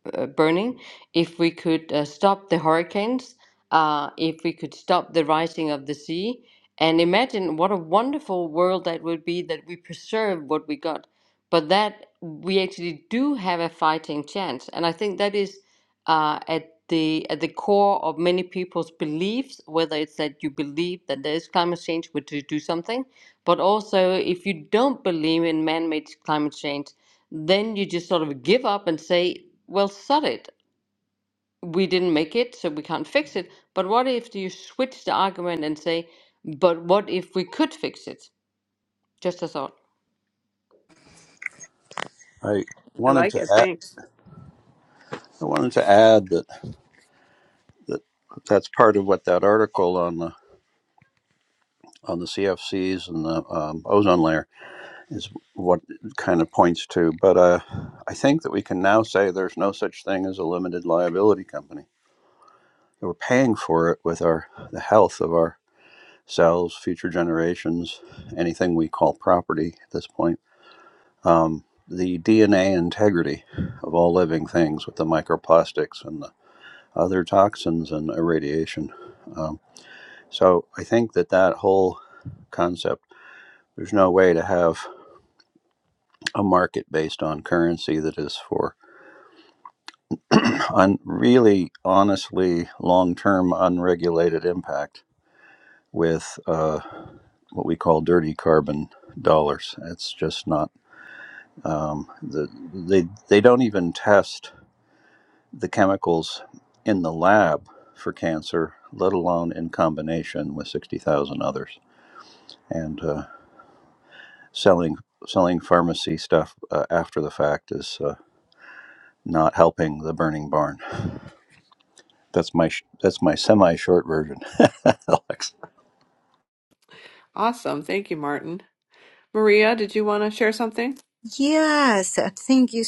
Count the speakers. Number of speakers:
4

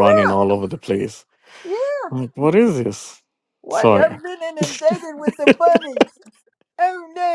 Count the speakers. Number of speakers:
2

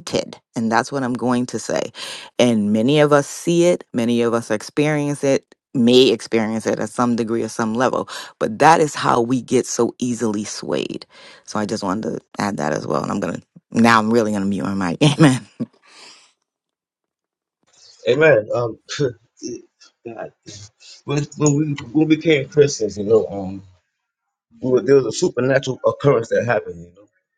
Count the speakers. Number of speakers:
2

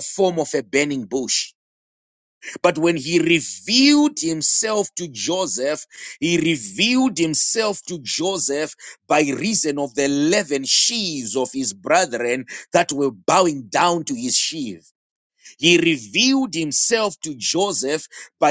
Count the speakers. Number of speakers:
1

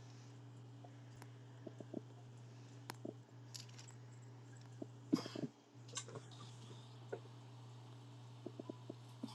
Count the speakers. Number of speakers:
0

